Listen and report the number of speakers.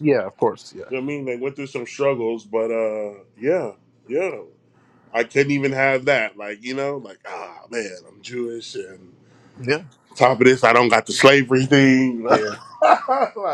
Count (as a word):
two